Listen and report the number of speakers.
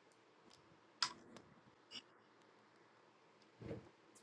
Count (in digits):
0